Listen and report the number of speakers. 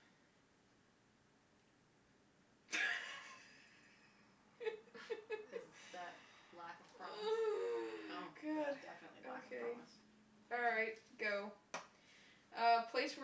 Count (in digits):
2